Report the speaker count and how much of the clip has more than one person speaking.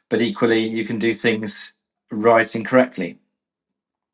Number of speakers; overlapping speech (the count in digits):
1, no overlap